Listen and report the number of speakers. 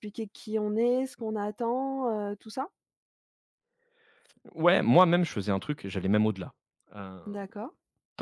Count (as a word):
two